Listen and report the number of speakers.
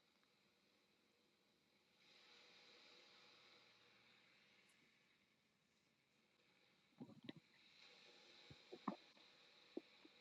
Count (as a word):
zero